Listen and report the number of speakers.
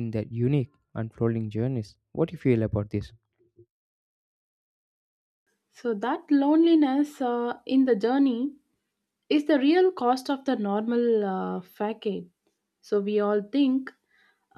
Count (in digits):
2